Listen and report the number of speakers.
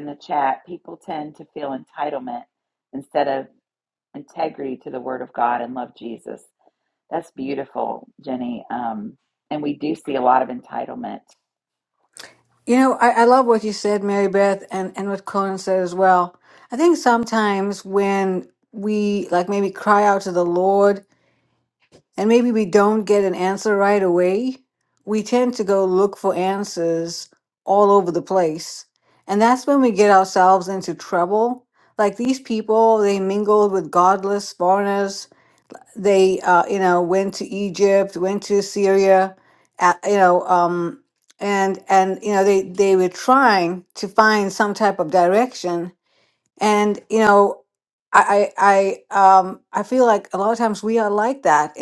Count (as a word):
two